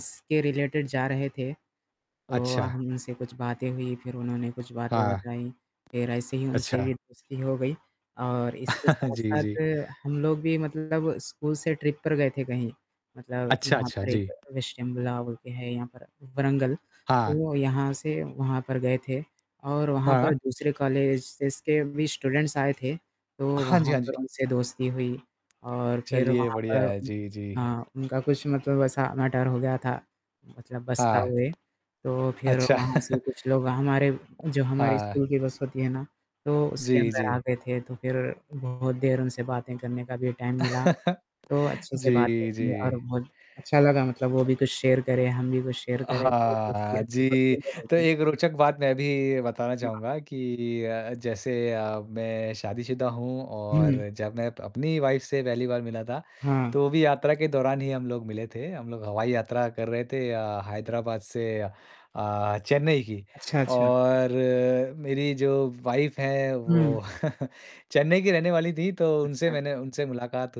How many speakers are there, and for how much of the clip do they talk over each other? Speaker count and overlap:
two, about 15%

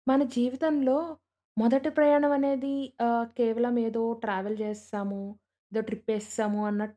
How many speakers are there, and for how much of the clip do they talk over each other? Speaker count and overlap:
one, no overlap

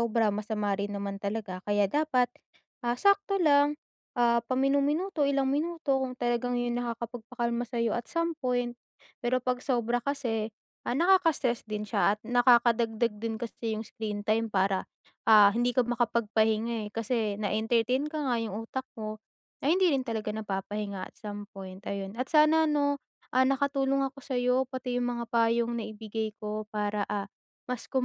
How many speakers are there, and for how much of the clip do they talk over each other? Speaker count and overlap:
one, no overlap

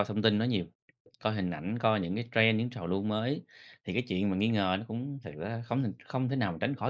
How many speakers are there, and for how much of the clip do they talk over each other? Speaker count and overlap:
one, no overlap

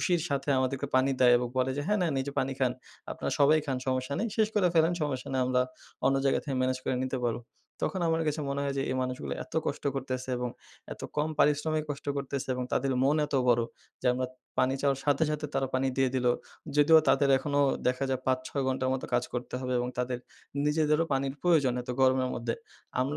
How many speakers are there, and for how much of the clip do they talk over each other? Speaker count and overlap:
one, no overlap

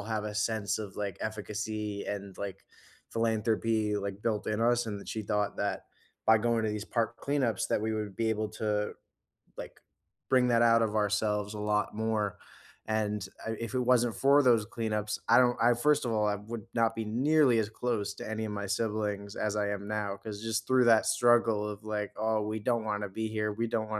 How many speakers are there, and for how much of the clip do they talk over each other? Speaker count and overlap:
one, no overlap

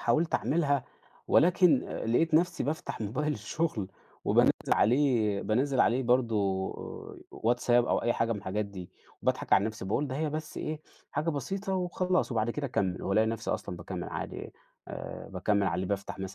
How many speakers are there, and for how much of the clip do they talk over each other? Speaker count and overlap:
one, no overlap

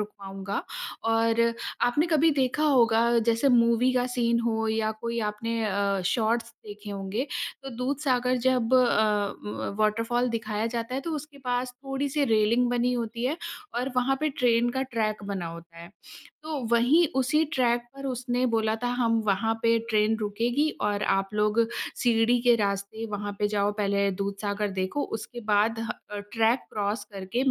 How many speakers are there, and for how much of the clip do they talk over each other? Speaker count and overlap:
one, no overlap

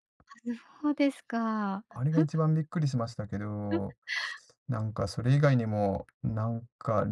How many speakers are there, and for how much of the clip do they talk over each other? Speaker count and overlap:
two, no overlap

